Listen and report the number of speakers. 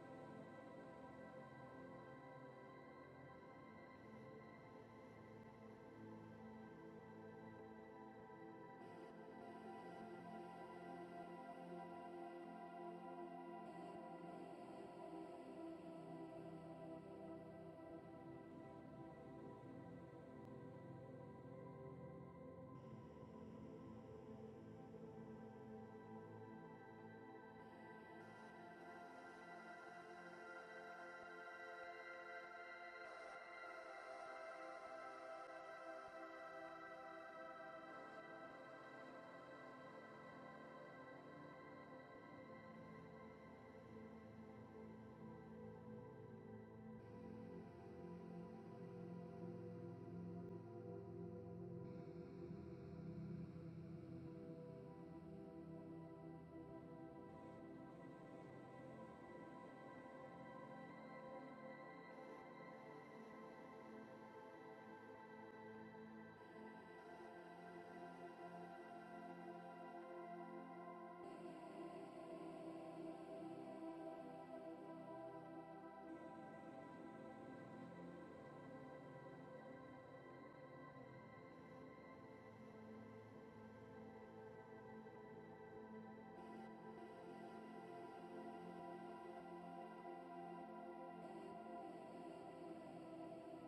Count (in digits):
0